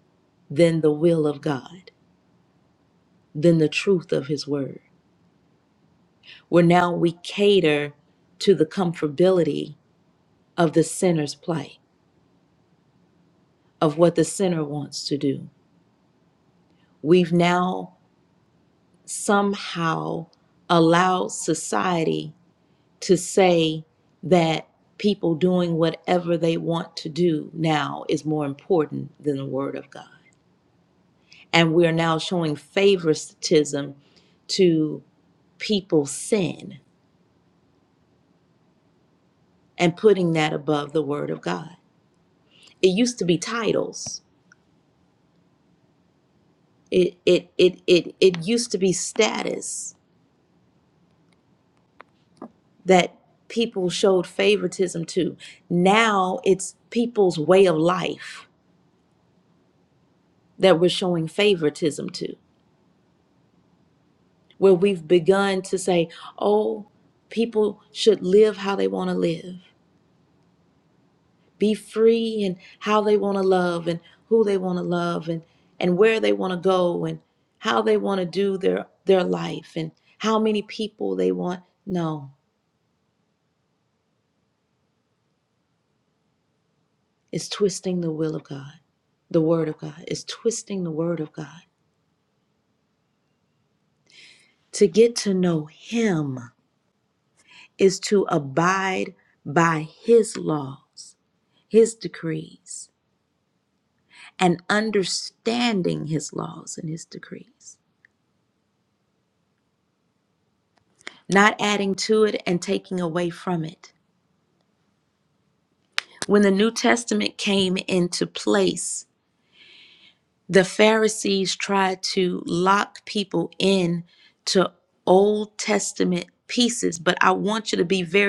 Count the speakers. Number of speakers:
one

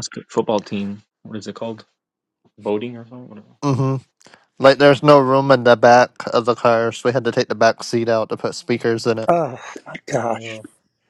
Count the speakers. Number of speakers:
three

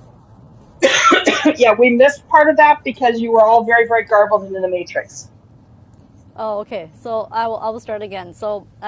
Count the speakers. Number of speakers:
two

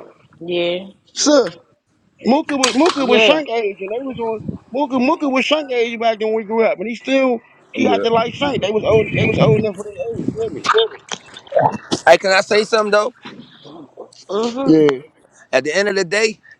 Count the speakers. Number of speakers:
three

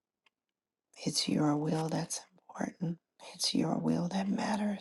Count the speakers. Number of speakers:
one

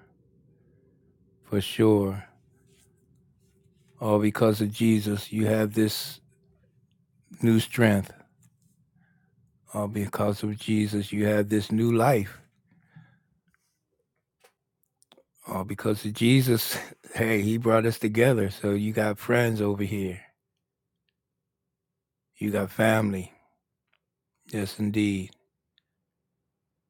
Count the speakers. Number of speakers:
one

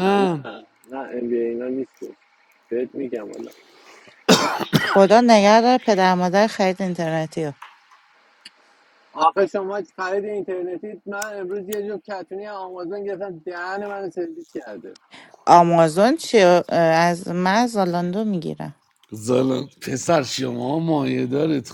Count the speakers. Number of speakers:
three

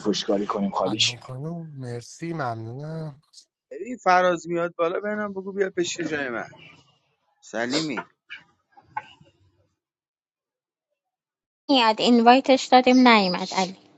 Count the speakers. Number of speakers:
four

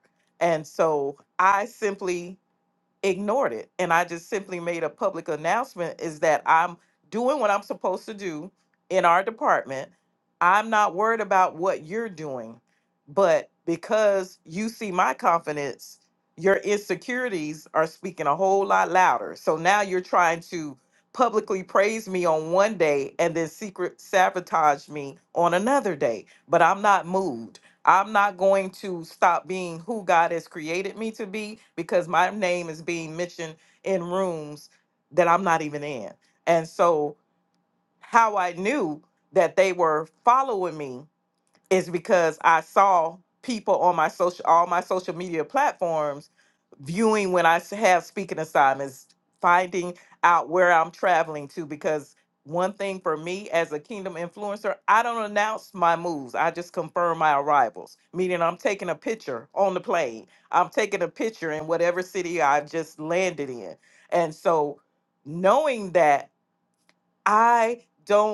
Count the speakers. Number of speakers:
one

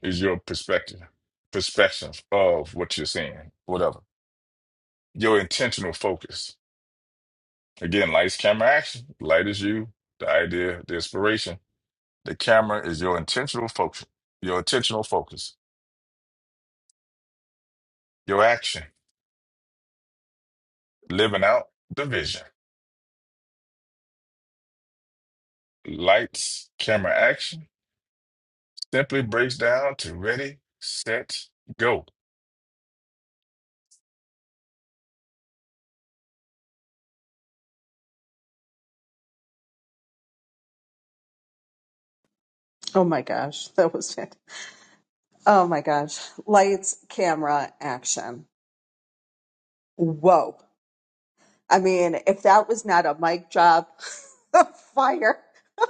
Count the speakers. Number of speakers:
two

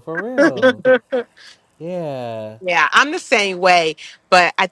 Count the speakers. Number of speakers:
two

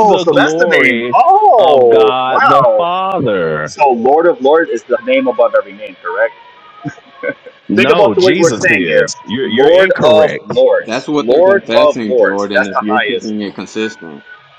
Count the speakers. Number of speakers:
three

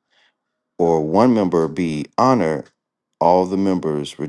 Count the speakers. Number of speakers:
one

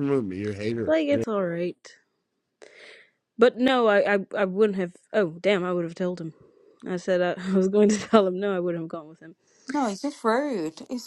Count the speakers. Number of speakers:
three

